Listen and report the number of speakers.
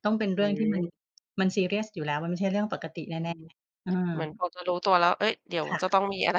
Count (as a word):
two